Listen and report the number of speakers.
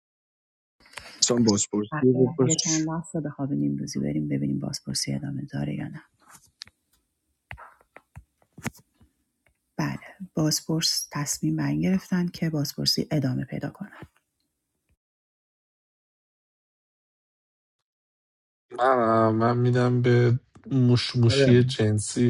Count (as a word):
three